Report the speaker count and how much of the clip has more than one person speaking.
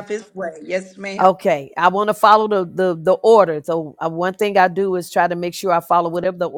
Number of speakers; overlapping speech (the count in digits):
2, about 1%